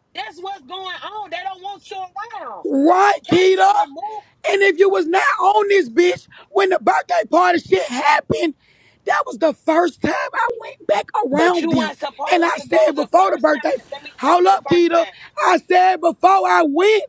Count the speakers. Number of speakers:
2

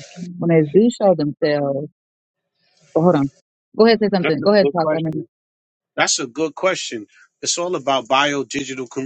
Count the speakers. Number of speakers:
2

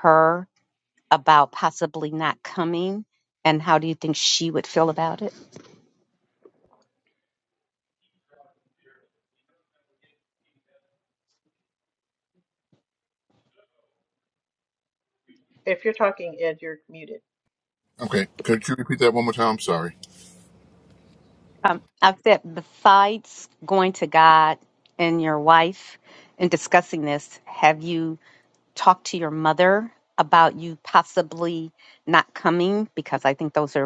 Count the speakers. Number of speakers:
3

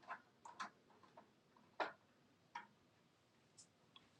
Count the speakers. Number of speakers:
0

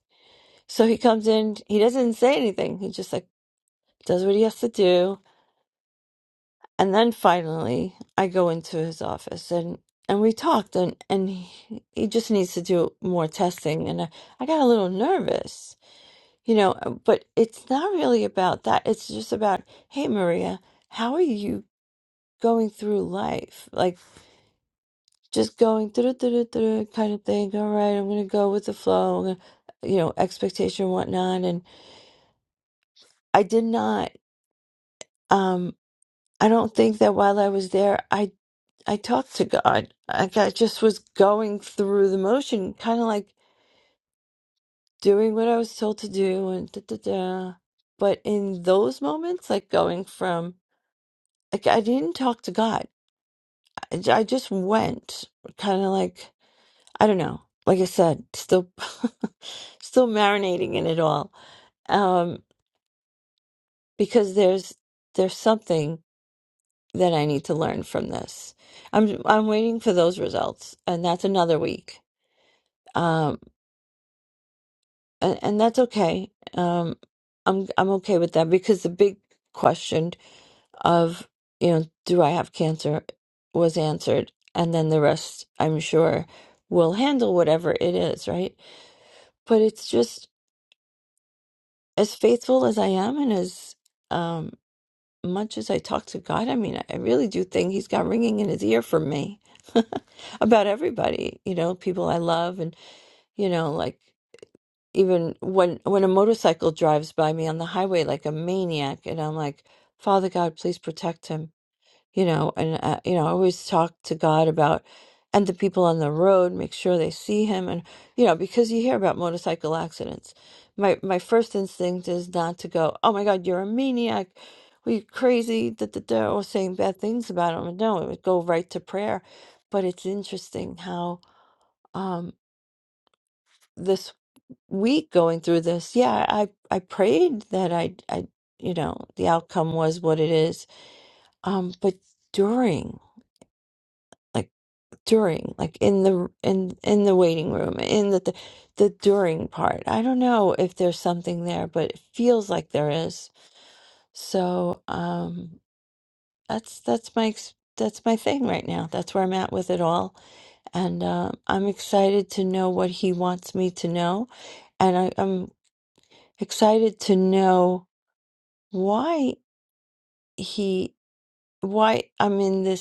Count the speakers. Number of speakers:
1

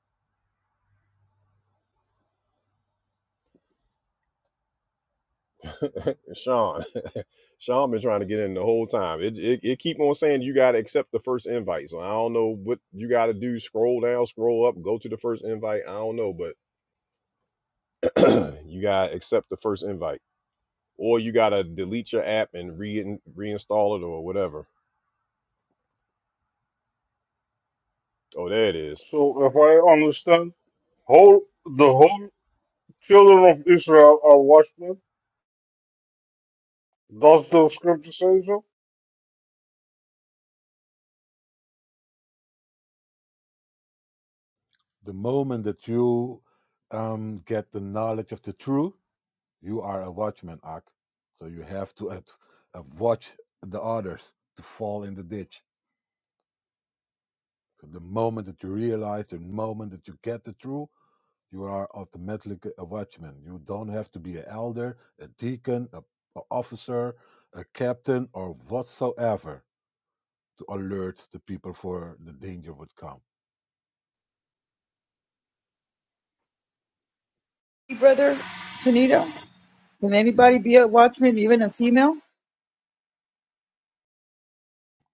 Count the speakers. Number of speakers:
4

